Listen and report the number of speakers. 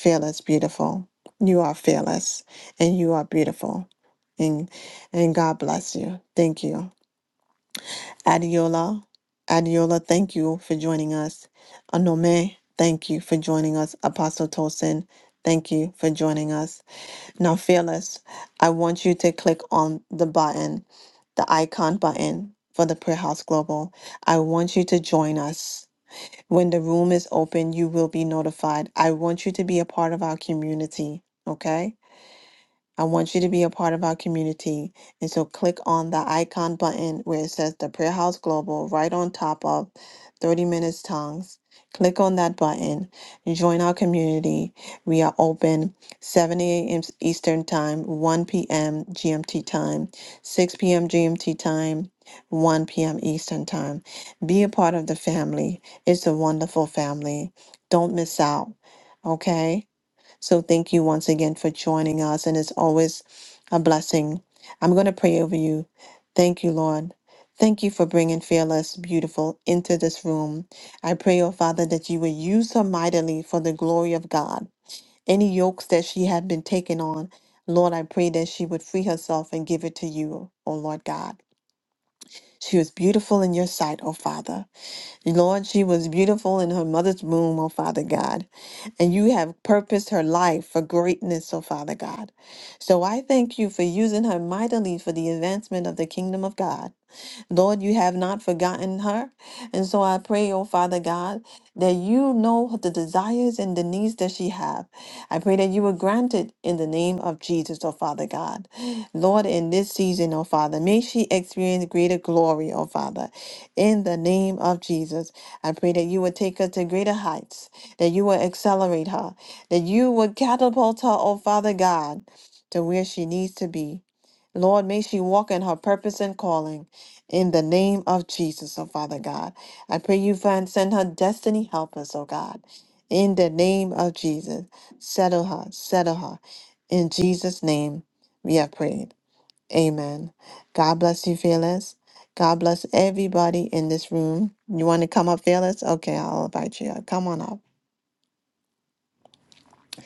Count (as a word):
one